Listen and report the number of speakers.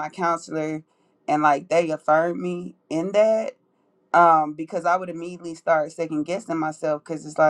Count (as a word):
one